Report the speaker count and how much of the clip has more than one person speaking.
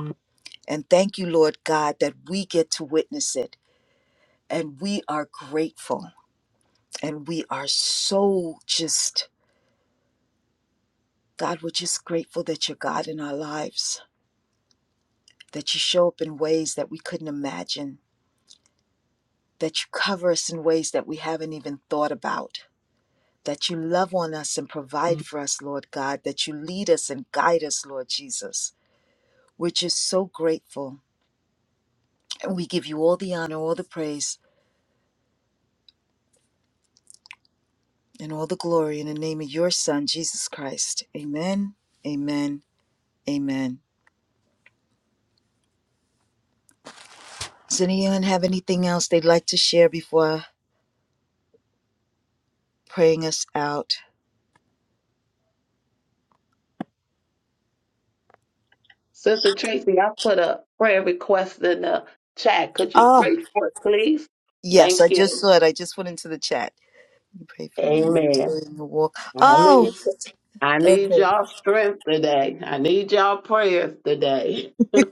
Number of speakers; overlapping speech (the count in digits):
2, about 4%